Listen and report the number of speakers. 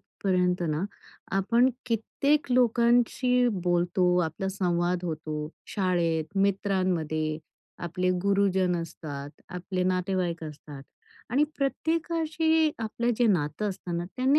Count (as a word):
one